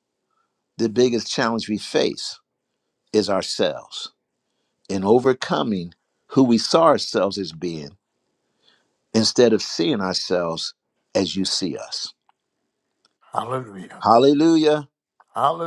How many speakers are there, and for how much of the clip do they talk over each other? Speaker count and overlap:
2, no overlap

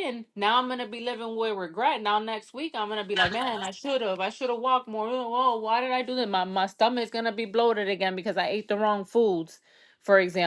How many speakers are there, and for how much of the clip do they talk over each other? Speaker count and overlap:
1, no overlap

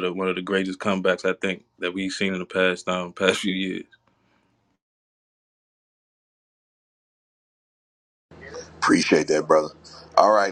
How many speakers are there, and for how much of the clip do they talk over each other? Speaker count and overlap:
2, no overlap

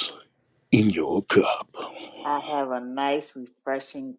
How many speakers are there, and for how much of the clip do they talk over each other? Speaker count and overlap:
2, no overlap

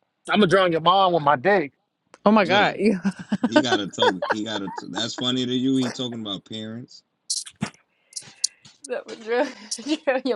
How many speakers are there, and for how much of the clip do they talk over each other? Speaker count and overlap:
3, about 3%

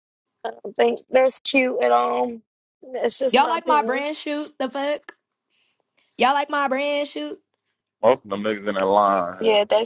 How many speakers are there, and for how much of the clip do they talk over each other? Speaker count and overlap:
3, about 10%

